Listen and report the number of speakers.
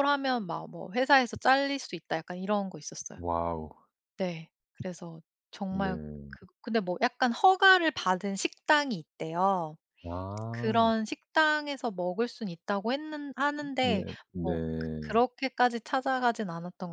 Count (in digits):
2